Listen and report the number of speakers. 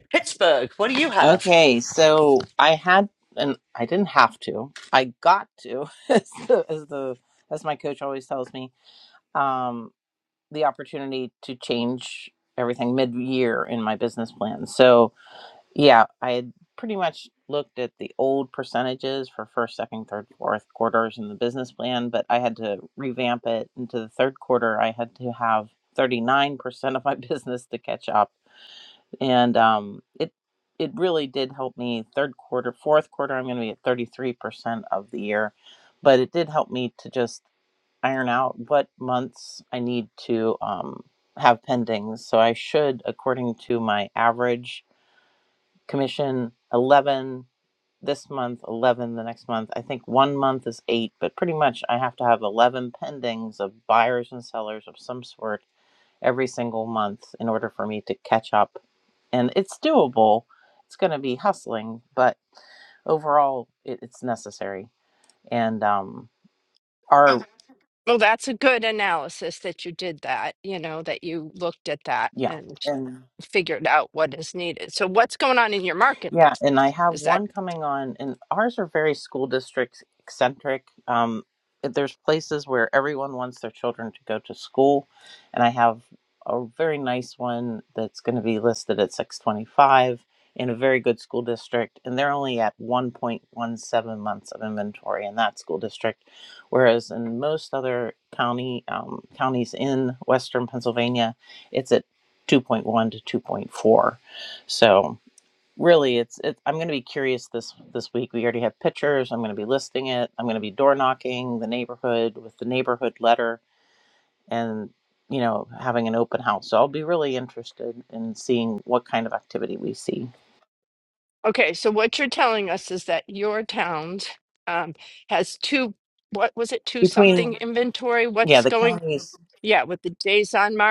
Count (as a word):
three